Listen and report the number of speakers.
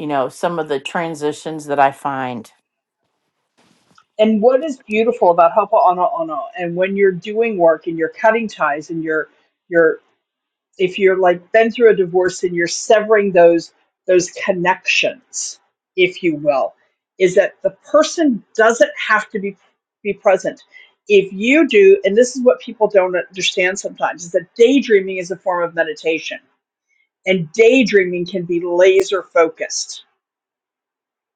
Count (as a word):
two